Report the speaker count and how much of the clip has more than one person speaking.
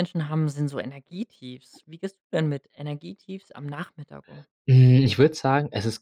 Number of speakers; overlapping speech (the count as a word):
two, no overlap